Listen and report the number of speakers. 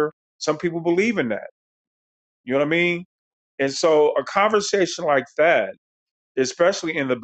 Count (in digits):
1